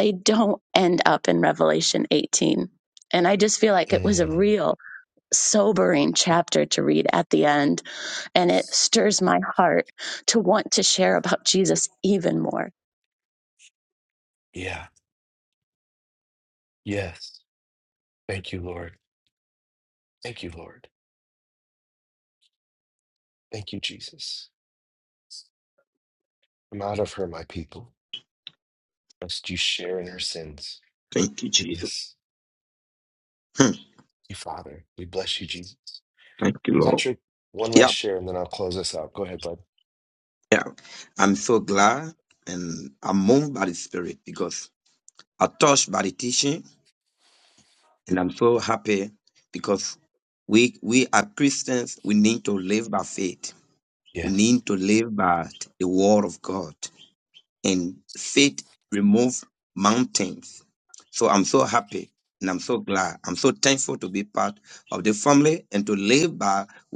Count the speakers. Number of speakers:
3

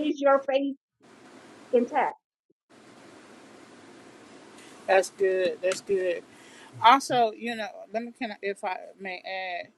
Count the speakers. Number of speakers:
2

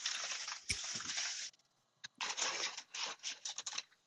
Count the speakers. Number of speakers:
0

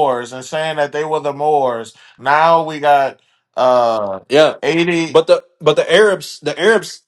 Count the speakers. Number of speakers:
2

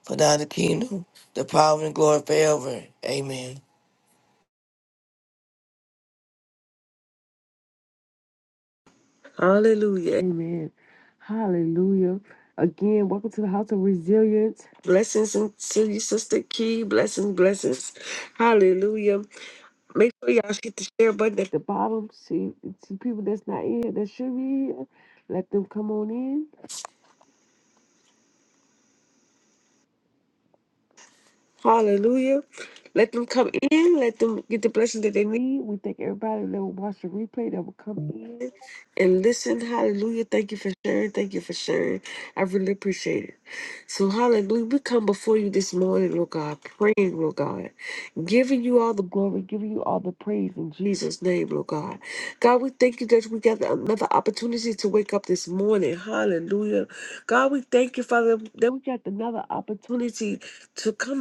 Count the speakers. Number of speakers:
2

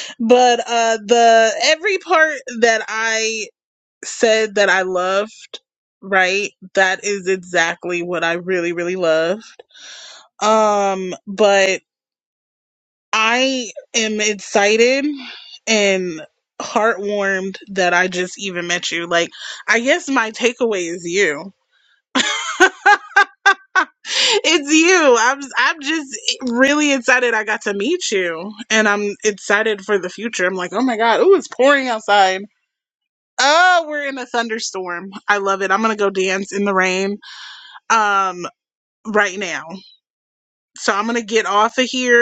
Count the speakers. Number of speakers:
1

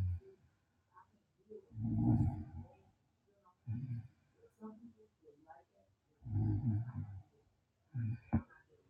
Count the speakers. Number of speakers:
0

